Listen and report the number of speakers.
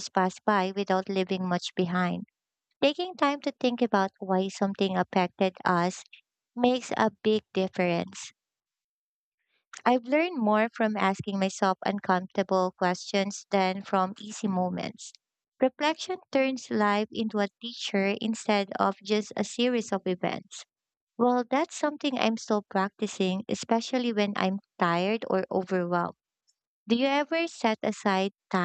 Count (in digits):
1